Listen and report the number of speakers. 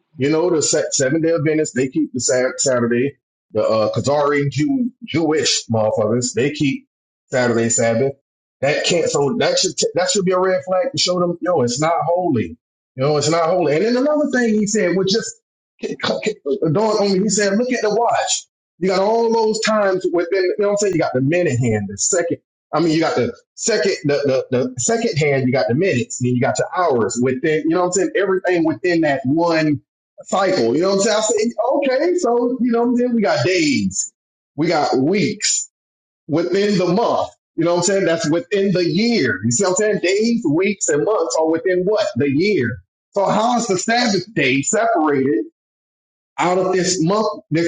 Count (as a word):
one